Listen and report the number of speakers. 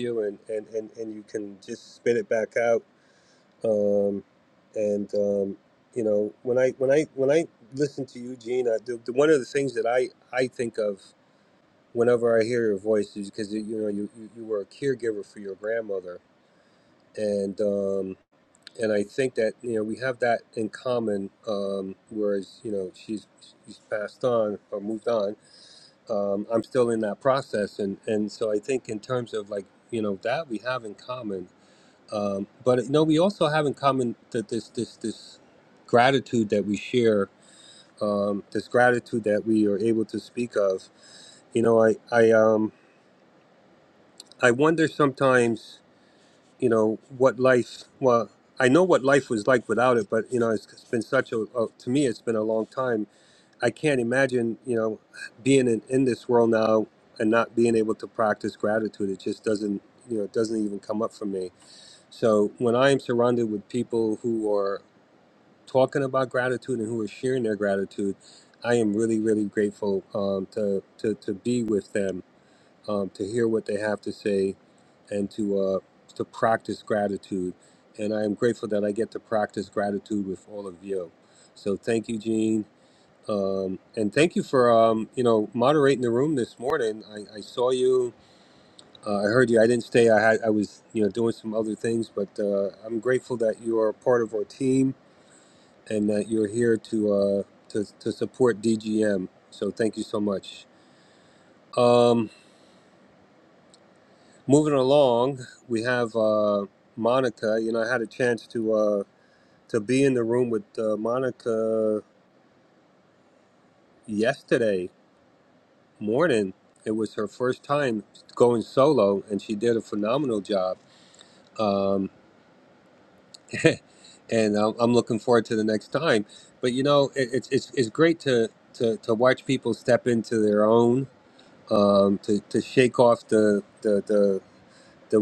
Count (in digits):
1